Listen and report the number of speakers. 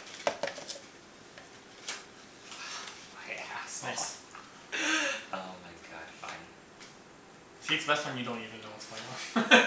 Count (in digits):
2